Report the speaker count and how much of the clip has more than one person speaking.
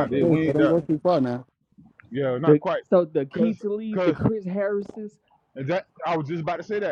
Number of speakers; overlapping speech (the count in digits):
3, about 29%